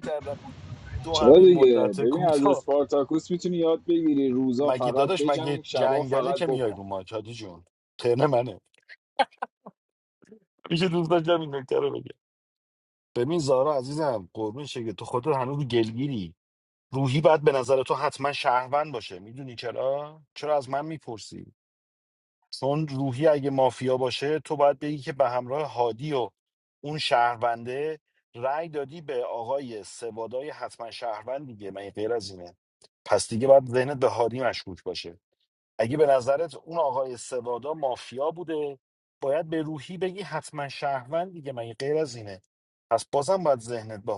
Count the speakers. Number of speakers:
two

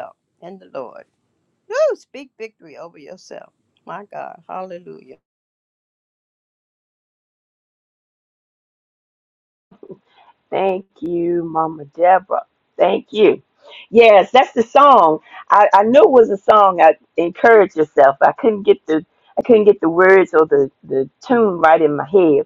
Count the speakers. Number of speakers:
two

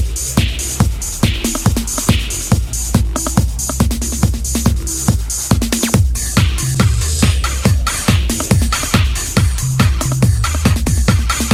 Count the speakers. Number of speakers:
zero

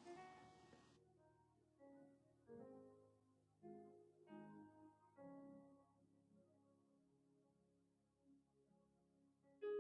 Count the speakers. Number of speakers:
zero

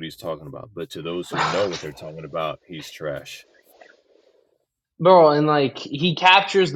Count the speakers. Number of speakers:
two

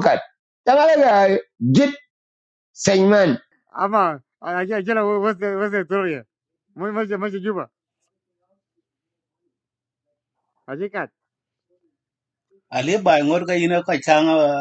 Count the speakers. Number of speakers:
three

